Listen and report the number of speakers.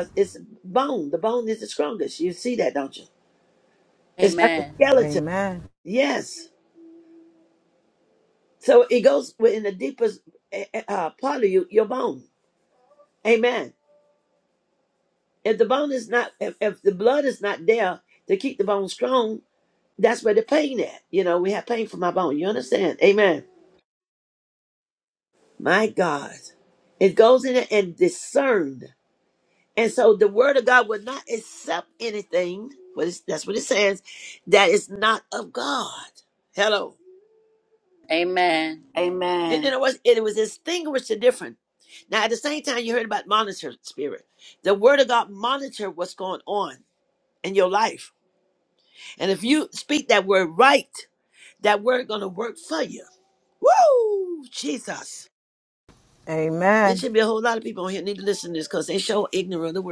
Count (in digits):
3